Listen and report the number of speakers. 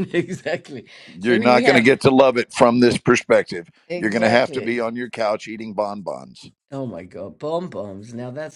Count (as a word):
two